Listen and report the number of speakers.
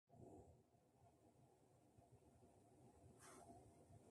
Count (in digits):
0